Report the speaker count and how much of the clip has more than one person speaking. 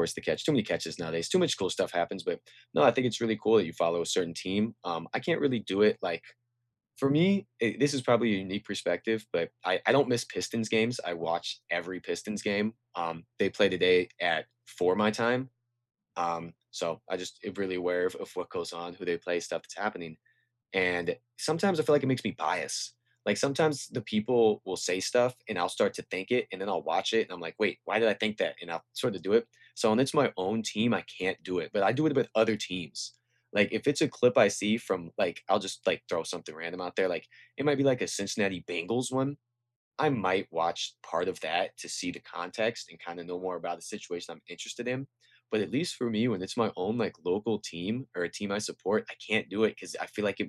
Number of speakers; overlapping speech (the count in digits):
1, no overlap